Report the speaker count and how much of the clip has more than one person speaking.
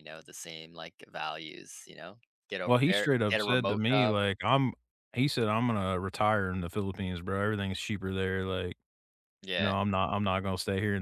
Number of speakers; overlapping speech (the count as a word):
two, about 15%